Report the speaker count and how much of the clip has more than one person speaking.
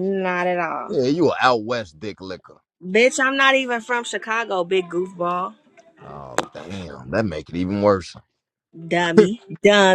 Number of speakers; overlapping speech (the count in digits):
2, about 1%